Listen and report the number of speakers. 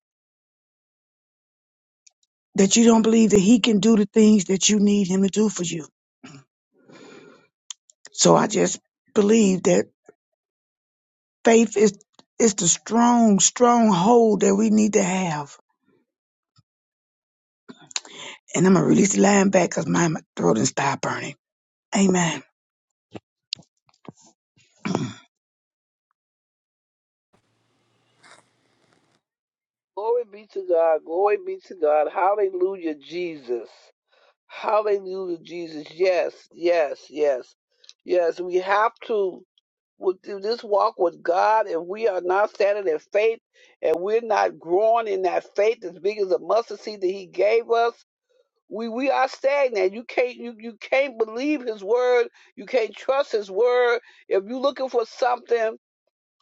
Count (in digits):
2